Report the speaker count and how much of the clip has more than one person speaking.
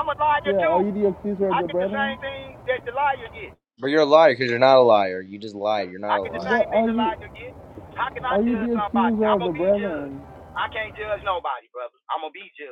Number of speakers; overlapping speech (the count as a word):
three, about 32%